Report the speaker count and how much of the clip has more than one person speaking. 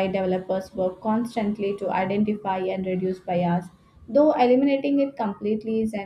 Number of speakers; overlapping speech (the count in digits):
1, no overlap